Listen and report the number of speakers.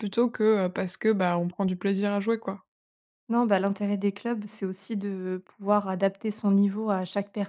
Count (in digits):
2